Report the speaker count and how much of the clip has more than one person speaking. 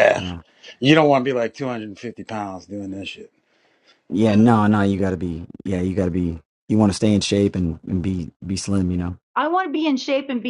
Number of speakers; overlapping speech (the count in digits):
3, about 3%